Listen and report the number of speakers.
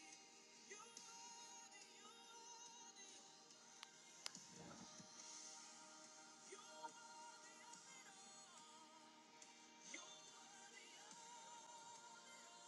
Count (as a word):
zero